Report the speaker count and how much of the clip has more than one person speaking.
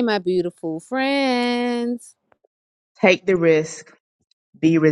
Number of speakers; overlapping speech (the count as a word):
two, no overlap